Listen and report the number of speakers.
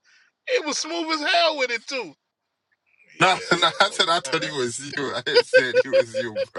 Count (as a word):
two